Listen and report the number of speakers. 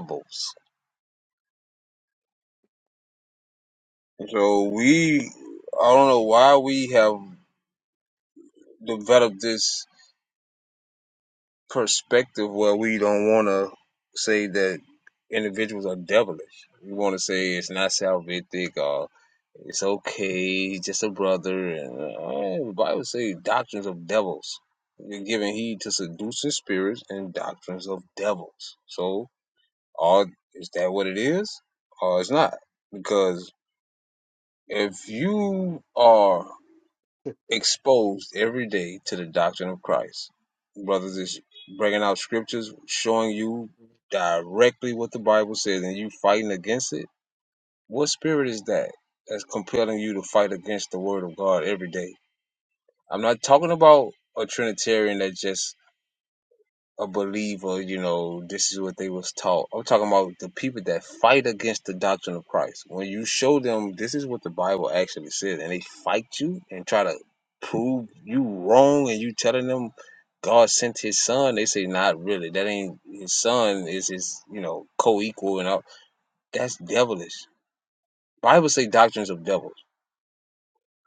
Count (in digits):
1